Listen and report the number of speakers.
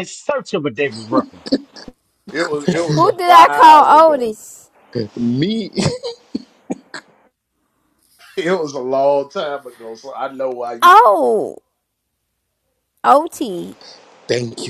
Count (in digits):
4